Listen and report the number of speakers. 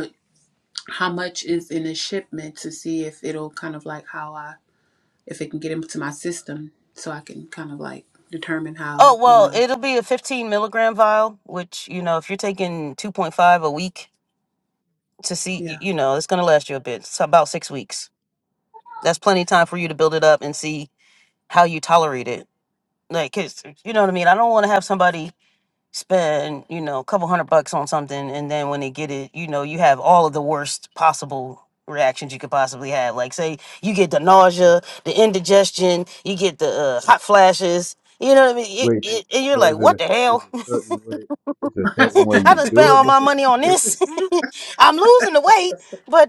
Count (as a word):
three